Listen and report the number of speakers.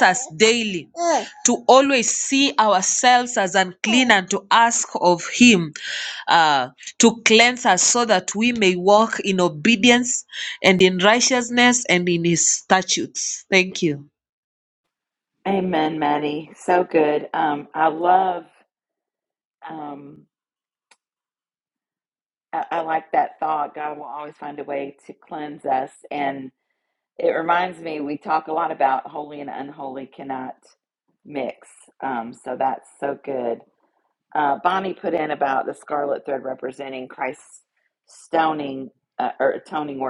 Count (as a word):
two